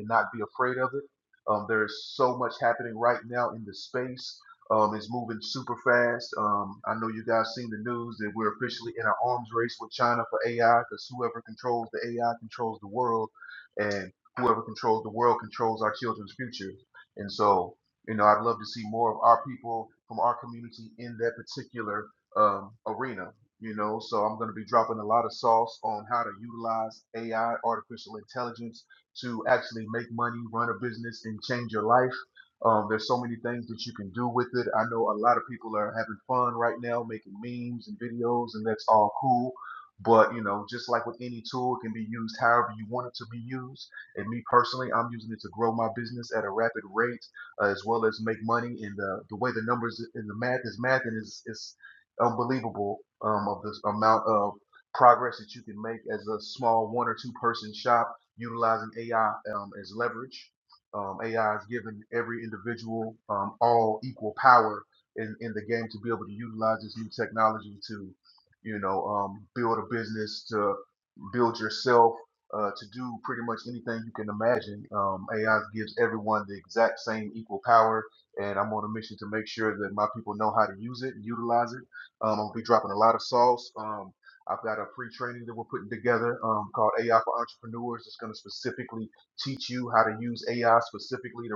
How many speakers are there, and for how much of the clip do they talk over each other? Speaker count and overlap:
1, no overlap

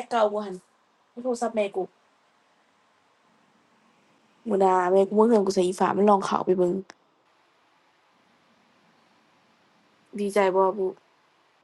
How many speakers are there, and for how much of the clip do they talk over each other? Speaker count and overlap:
1, no overlap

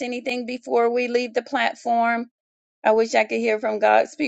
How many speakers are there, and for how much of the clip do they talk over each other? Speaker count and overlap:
1, no overlap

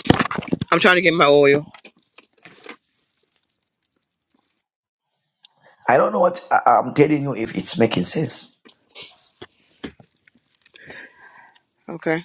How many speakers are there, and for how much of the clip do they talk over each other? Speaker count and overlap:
2, no overlap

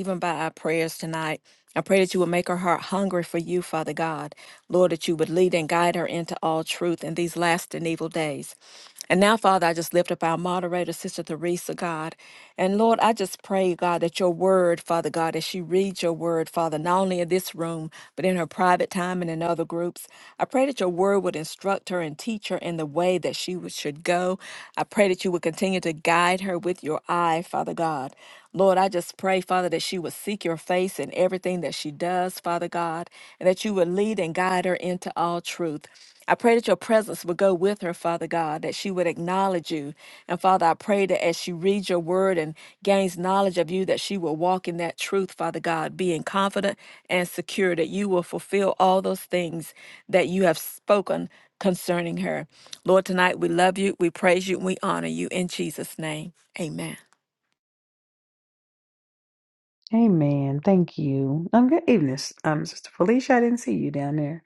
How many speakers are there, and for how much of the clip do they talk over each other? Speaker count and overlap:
2, no overlap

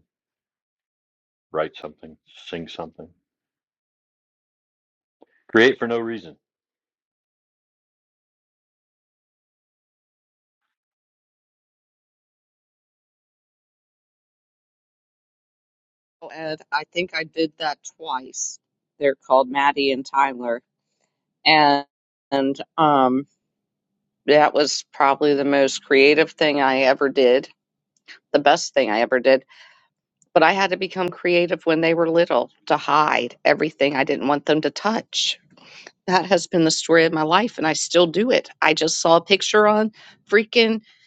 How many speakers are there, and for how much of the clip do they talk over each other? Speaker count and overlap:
2, no overlap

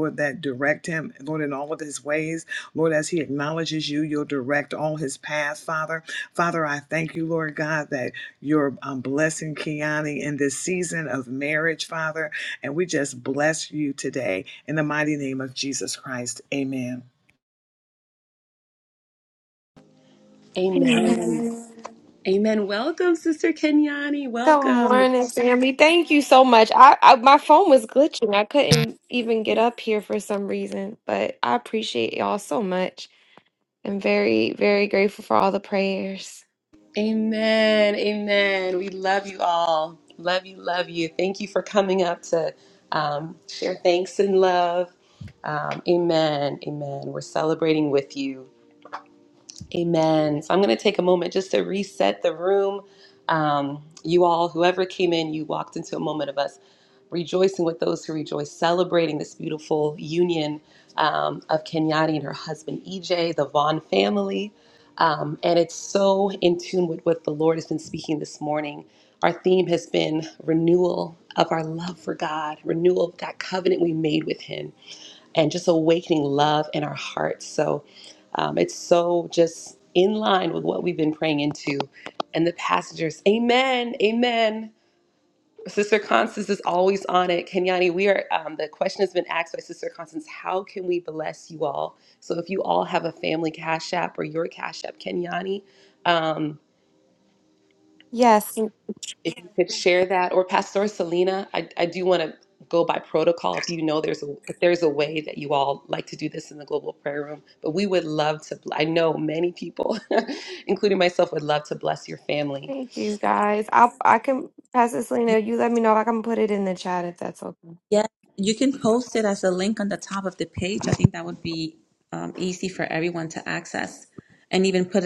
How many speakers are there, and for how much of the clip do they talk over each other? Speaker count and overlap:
4, about 1%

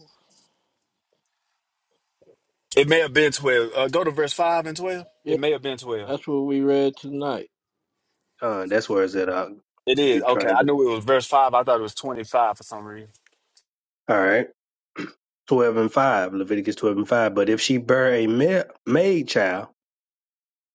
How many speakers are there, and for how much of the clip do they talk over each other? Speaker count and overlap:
3, about 3%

